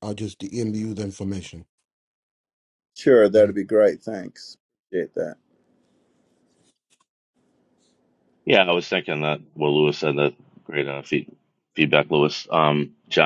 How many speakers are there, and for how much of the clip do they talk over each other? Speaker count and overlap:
three, no overlap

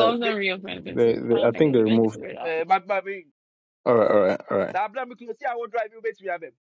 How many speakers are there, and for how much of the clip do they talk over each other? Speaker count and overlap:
three, about 23%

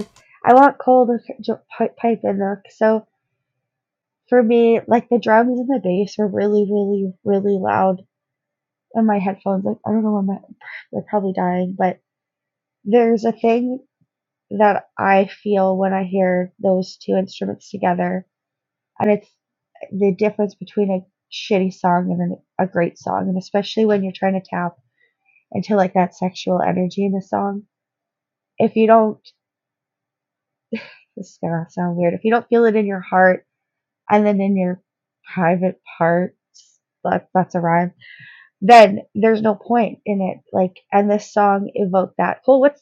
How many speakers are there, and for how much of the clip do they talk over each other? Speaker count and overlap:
one, no overlap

